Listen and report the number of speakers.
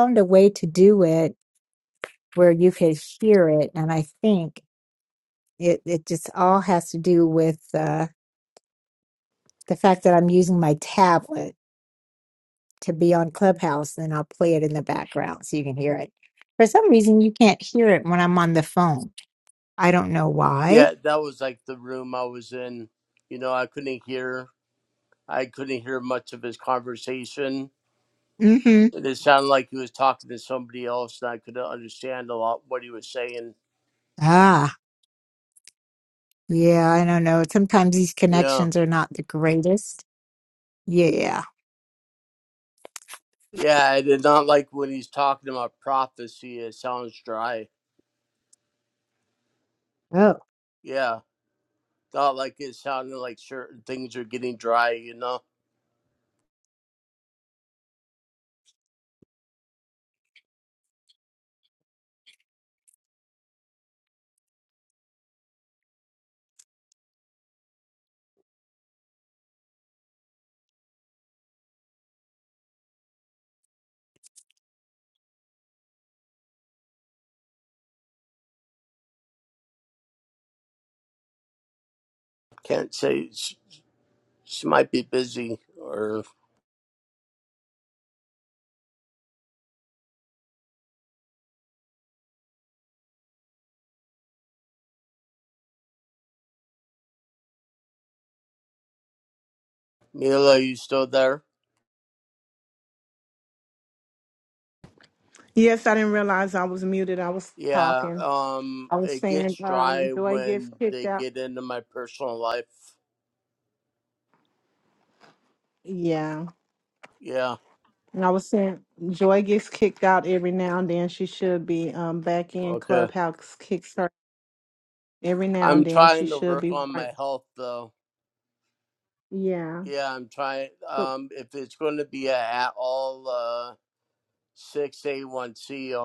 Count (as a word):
three